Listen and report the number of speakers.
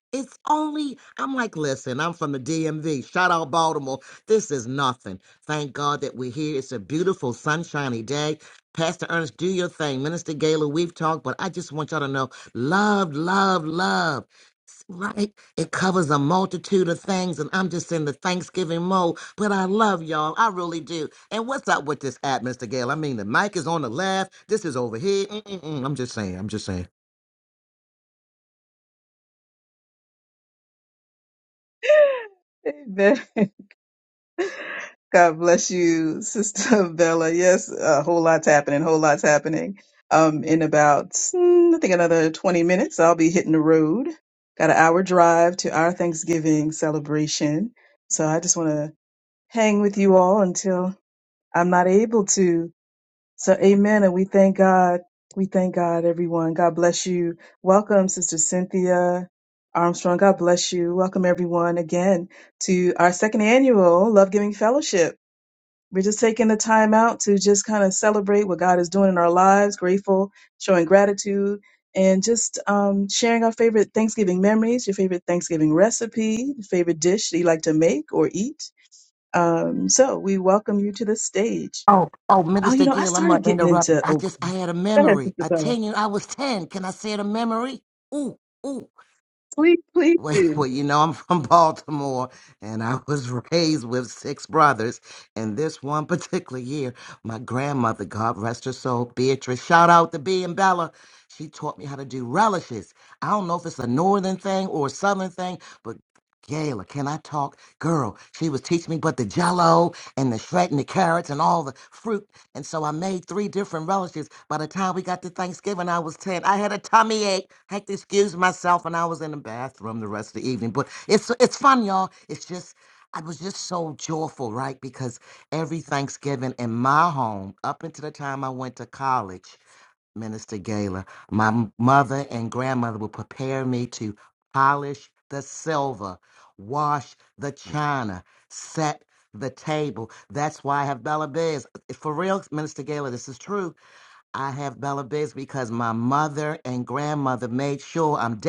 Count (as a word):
two